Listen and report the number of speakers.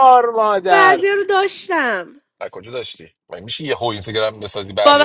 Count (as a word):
three